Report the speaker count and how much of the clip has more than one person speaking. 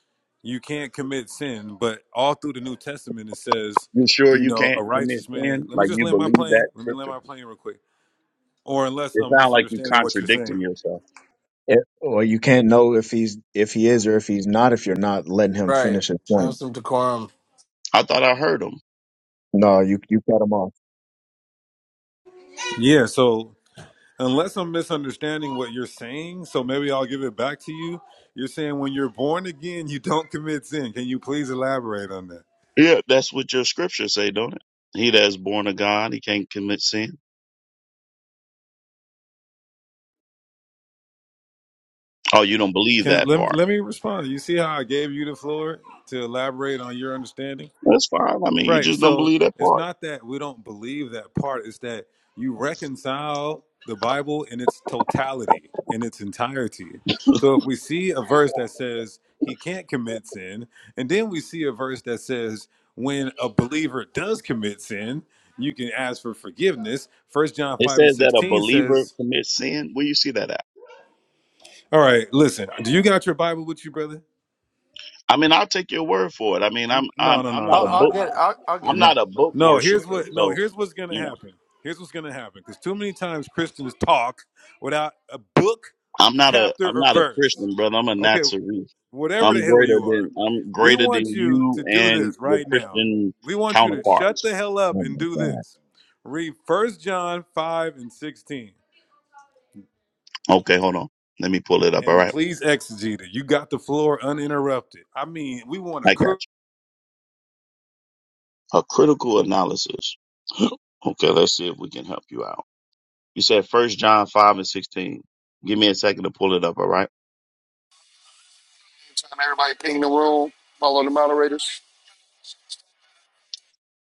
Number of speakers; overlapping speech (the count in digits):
5, about 14%